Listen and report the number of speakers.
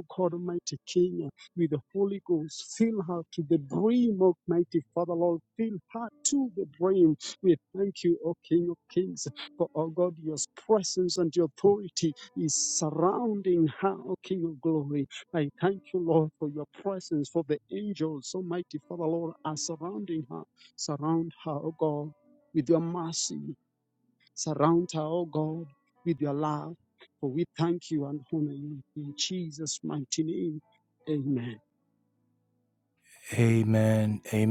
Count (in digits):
2